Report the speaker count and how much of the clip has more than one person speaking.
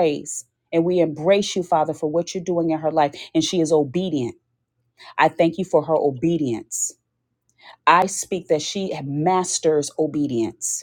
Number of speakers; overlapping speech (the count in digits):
1, no overlap